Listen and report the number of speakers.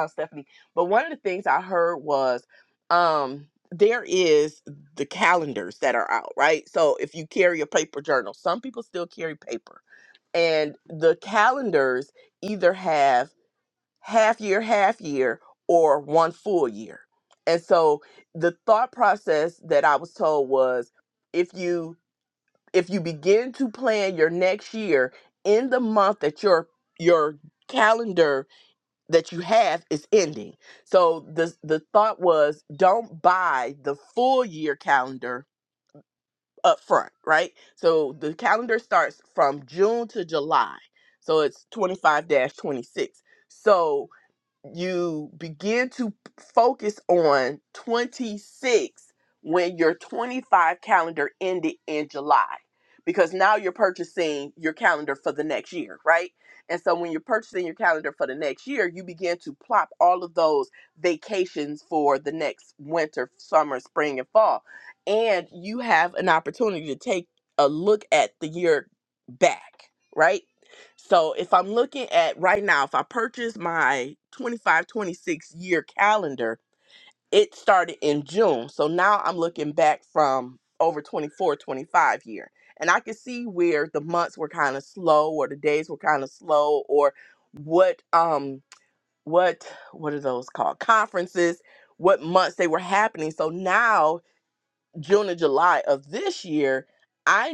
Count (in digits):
1